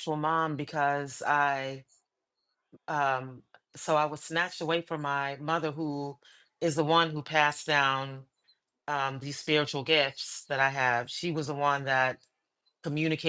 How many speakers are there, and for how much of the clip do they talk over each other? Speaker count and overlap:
one, no overlap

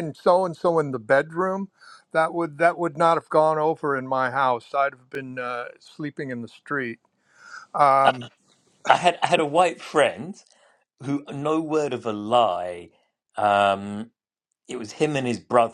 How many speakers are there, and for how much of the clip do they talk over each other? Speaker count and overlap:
two, no overlap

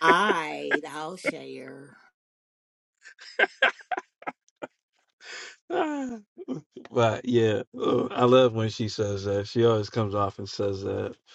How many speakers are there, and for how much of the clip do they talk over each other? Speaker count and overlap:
two, no overlap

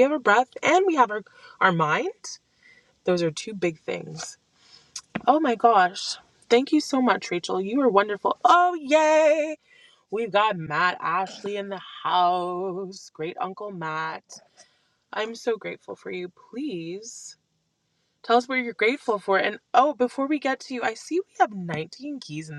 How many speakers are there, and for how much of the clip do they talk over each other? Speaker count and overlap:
one, no overlap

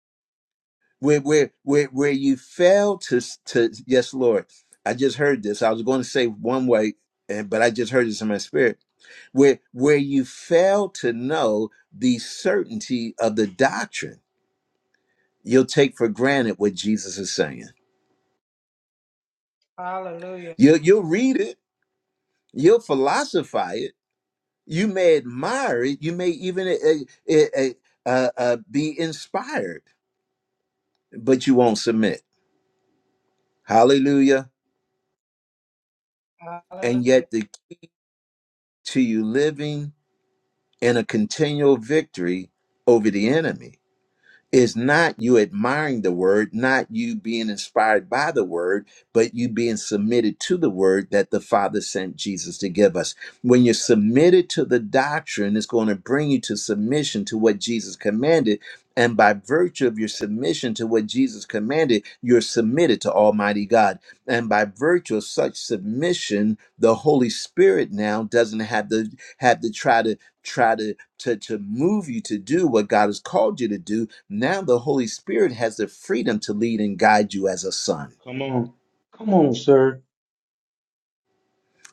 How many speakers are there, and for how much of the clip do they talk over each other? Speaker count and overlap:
three, about 1%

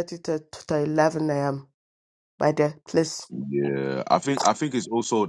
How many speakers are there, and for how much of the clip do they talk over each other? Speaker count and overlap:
two, no overlap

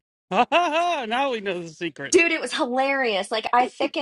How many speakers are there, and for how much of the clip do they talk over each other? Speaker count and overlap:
two, no overlap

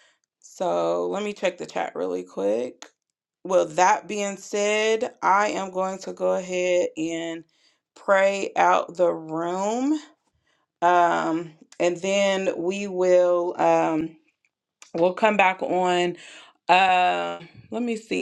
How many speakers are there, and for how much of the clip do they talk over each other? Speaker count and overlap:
one, no overlap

